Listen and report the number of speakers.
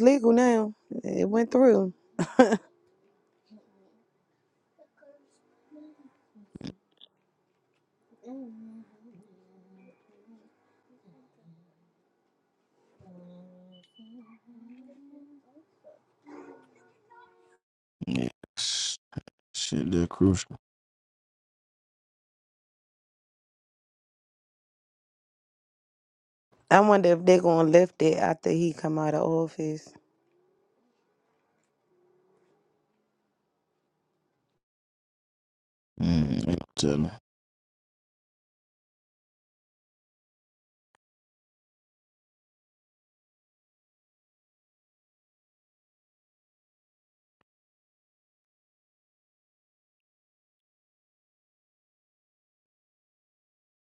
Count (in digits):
2